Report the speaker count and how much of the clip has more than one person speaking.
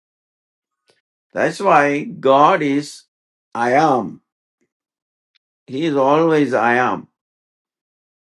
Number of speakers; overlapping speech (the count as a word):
one, no overlap